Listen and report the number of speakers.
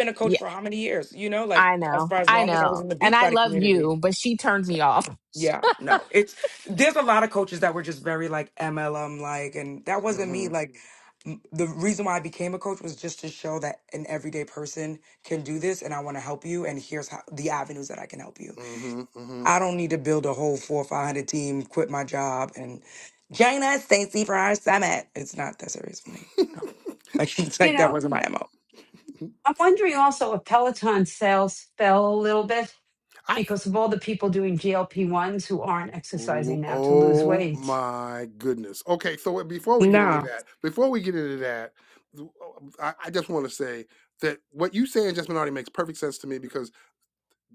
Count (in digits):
4